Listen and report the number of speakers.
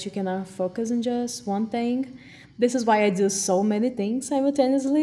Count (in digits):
1